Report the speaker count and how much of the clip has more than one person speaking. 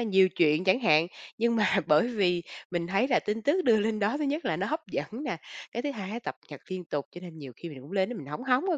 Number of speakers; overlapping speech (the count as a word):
one, no overlap